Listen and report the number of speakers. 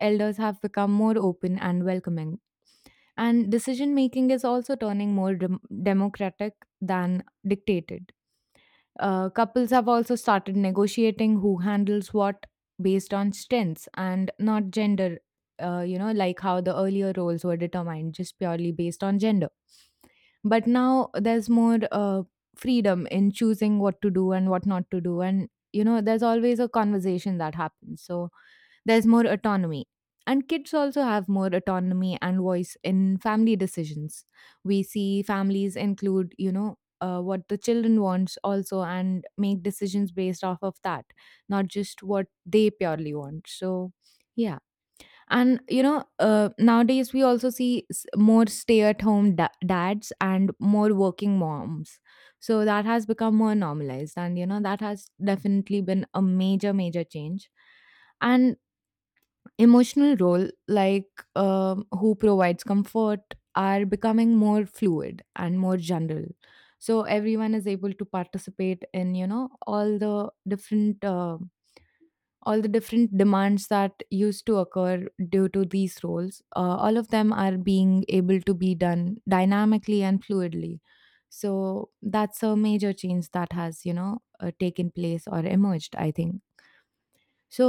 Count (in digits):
1